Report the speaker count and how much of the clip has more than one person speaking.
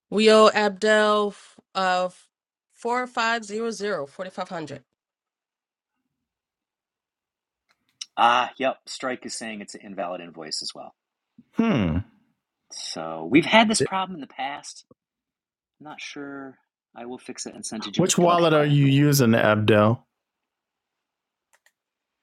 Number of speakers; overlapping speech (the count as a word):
three, about 3%